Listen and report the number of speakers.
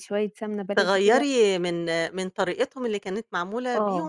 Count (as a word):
two